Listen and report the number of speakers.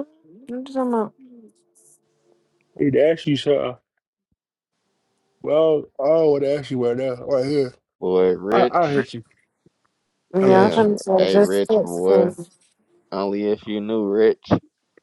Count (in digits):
3